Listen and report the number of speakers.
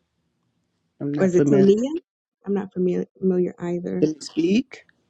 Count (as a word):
two